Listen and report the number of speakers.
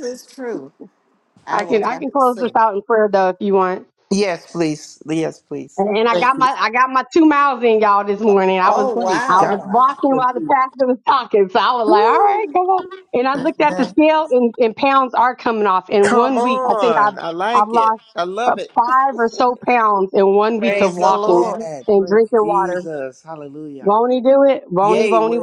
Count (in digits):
3